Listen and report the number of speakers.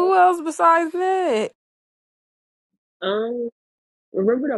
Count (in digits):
2